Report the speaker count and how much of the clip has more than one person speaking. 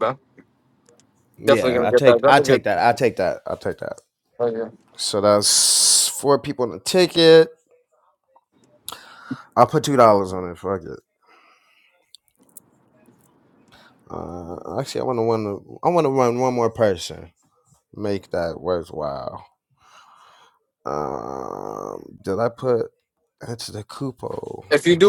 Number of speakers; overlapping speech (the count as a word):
two, about 6%